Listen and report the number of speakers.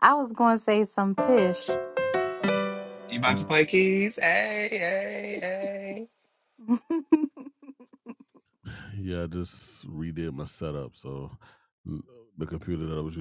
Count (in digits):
3